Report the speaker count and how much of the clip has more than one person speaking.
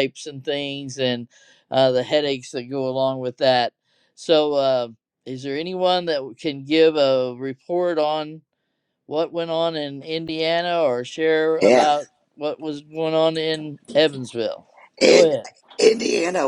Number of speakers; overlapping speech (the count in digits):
2, about 4%